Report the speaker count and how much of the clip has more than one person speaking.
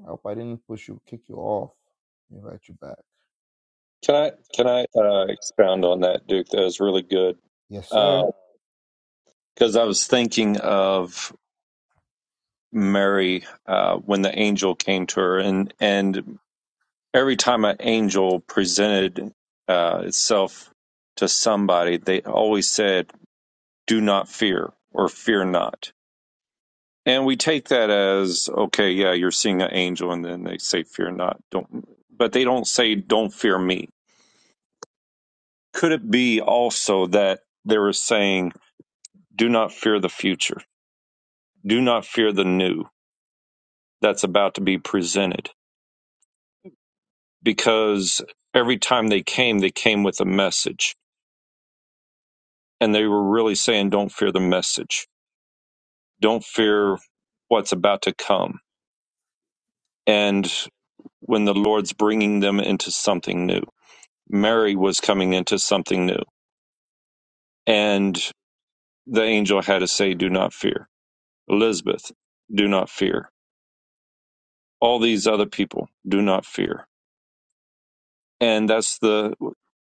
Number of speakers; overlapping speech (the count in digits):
2, about 1%